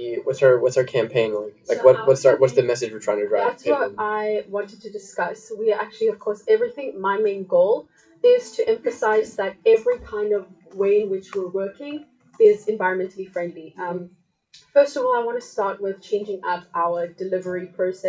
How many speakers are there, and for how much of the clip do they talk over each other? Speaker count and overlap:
2, about 10%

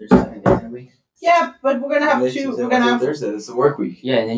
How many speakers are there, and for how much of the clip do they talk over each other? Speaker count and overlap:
3, about 24%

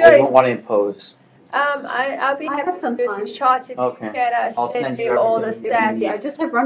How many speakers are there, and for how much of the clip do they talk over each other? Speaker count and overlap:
3, about 50%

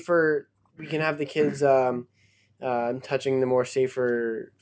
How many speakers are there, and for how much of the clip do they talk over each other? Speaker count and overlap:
1, no overlap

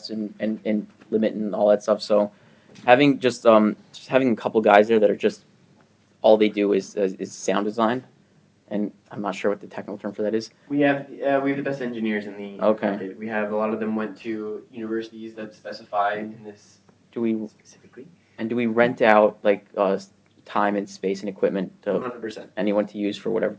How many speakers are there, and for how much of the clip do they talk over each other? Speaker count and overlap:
2, about 3%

